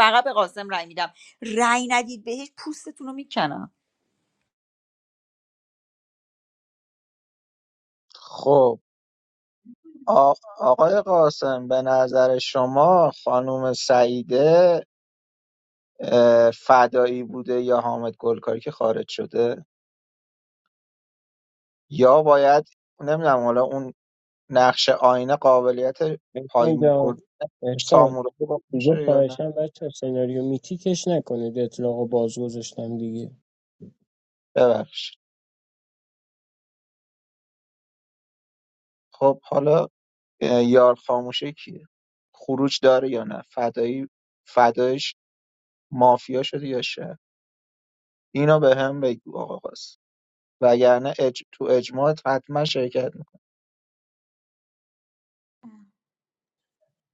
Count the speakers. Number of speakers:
three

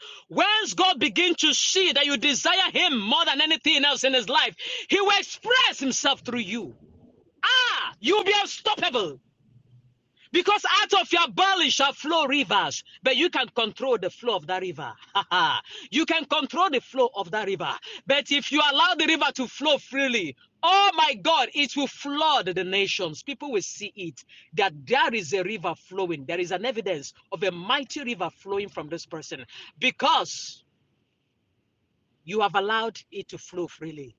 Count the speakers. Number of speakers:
one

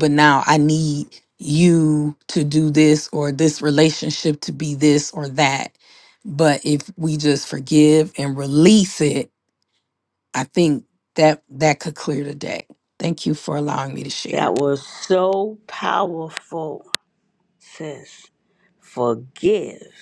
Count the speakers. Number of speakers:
two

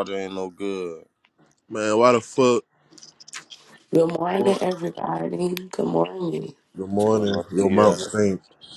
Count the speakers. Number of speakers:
three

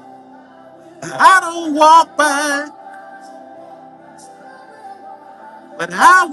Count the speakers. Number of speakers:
one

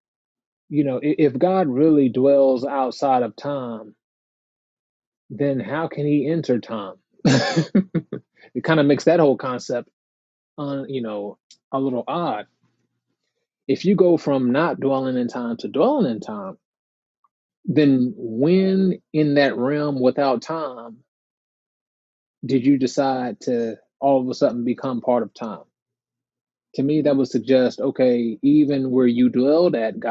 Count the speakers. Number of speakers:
one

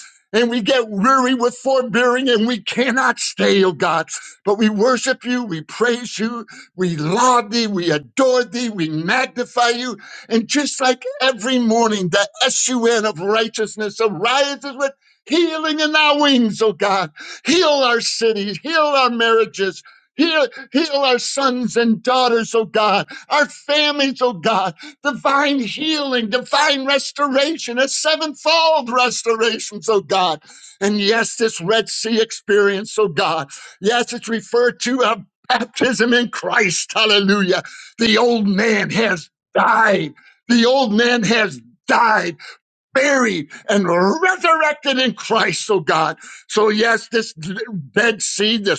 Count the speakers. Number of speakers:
one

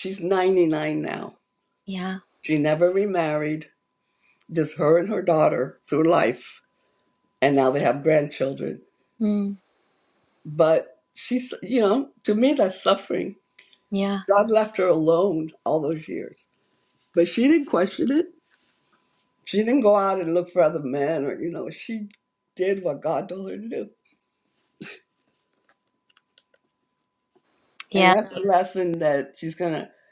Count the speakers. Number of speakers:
two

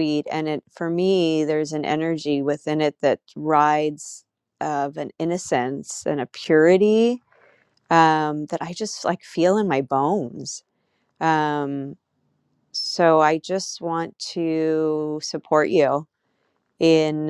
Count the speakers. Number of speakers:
one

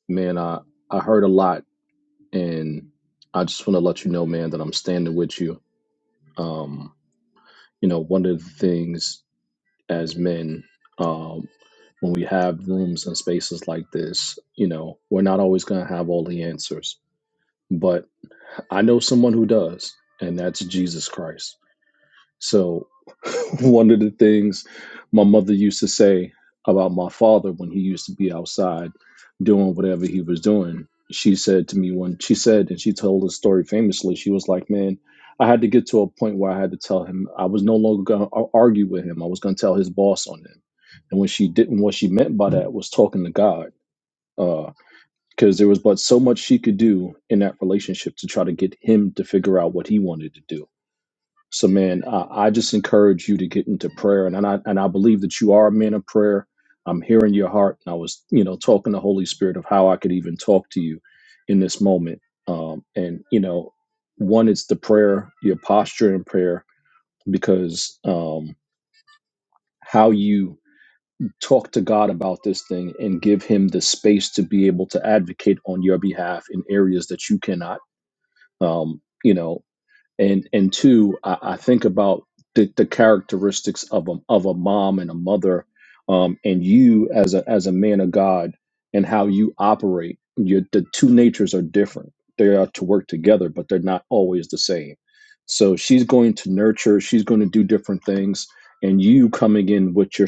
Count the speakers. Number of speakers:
one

